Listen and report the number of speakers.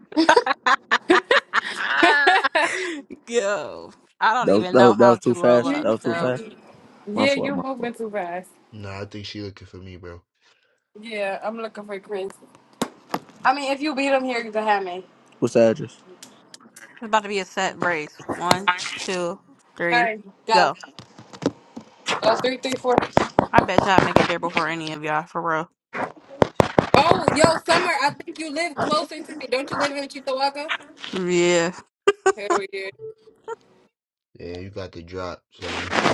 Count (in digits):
4